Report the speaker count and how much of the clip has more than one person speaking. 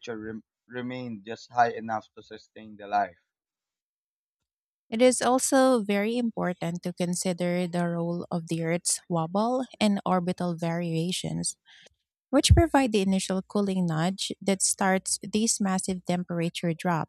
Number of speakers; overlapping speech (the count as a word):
two, no overlap